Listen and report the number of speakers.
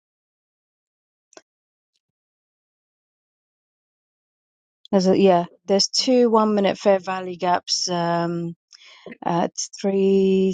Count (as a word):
one